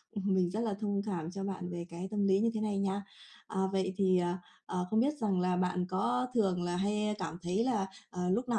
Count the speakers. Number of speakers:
1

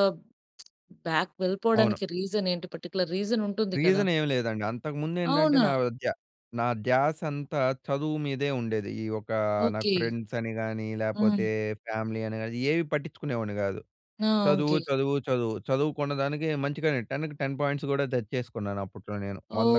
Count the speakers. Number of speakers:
2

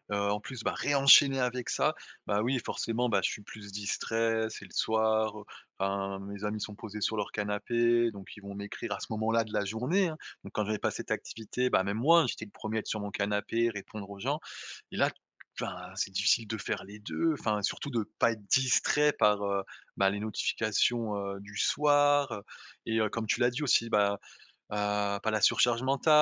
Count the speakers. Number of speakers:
1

